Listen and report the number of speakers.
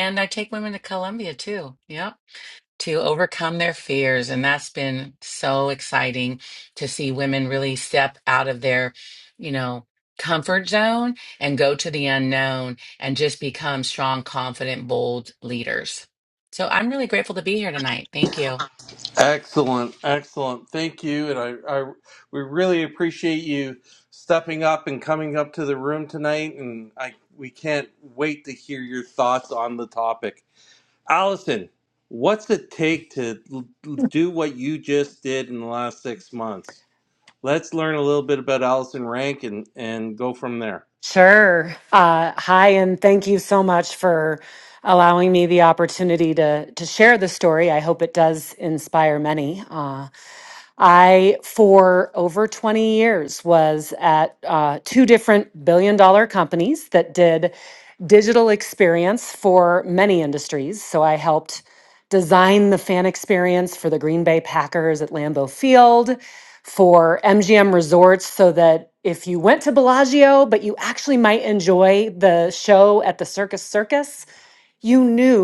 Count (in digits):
3